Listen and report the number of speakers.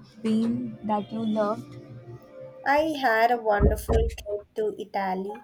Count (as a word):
two